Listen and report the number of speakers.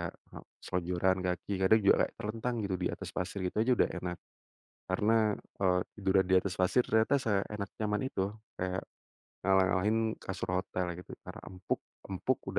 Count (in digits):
1